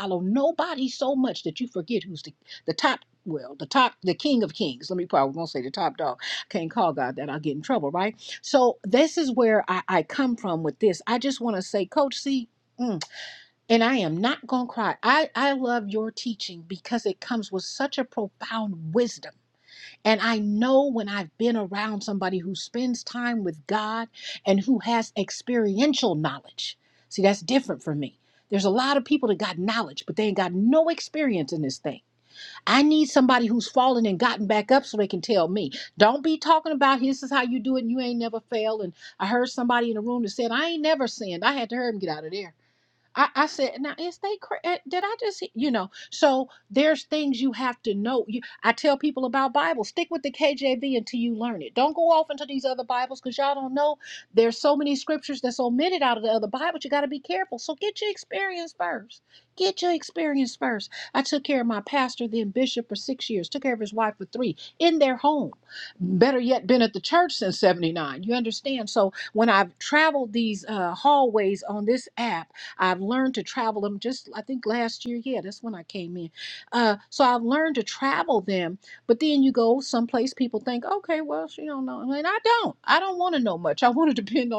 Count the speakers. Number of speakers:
1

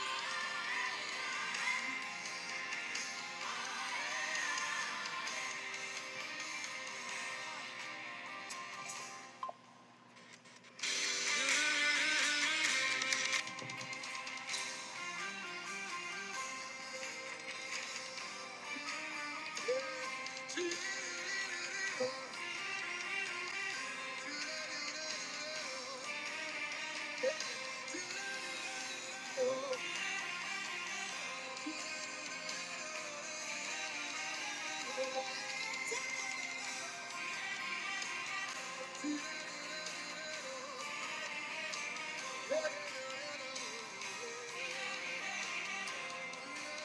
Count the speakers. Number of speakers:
0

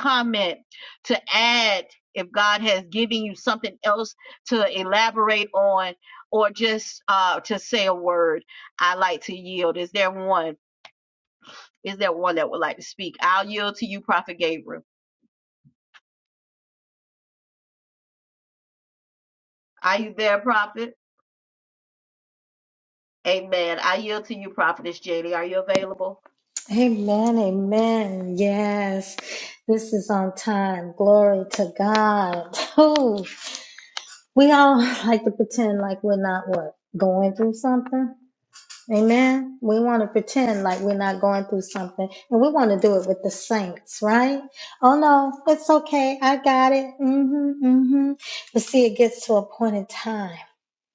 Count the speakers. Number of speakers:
2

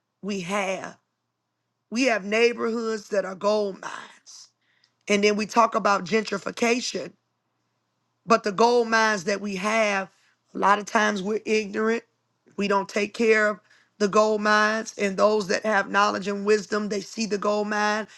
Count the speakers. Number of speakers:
1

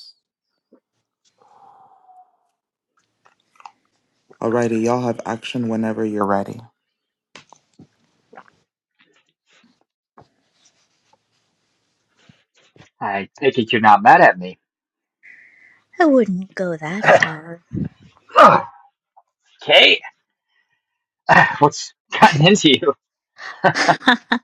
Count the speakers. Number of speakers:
3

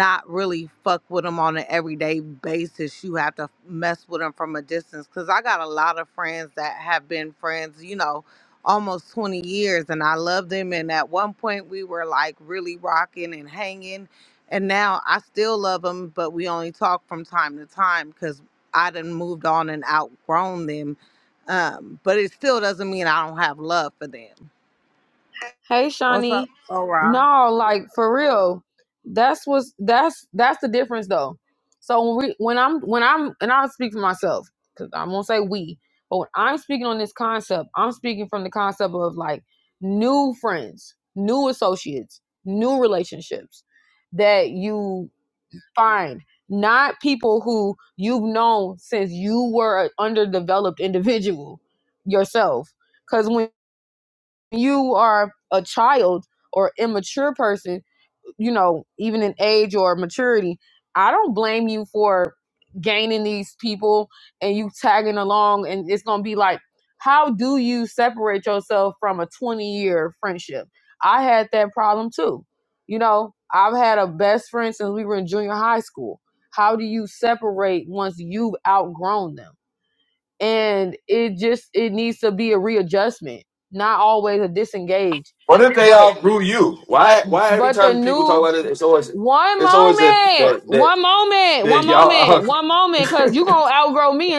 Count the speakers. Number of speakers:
3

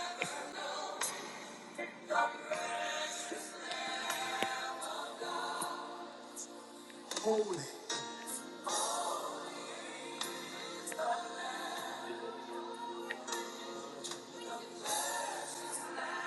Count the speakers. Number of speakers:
0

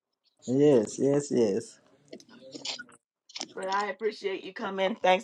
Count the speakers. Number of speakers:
2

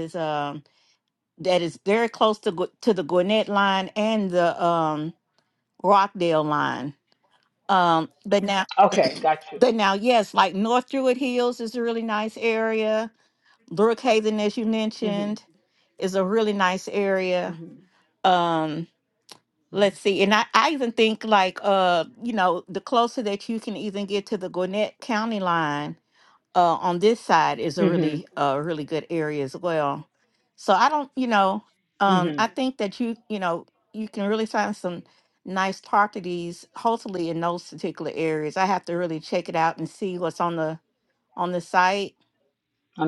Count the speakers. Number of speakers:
2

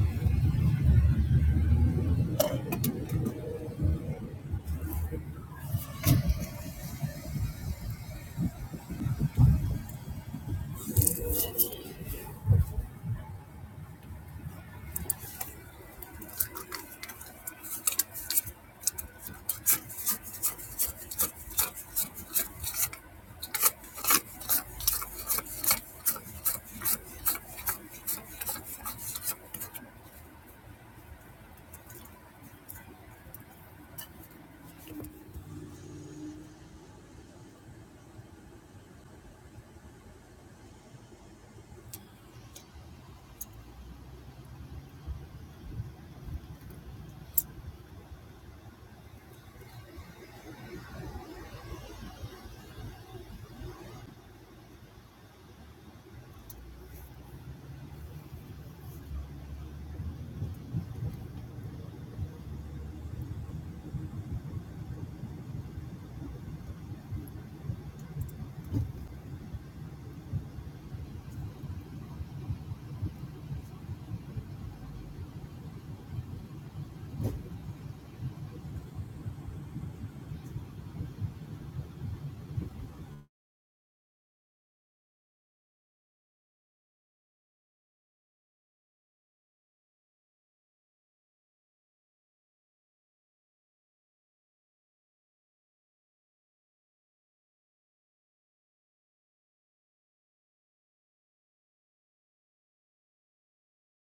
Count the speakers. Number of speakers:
0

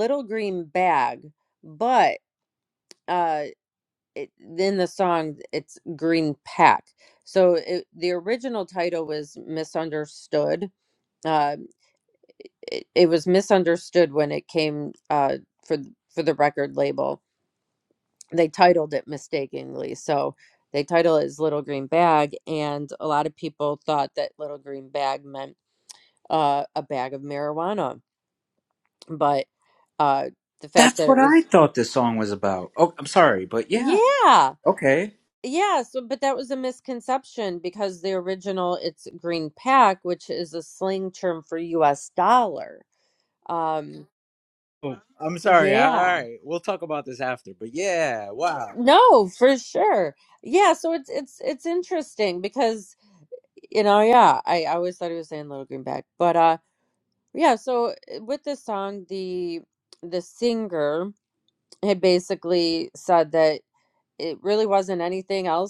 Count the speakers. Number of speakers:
2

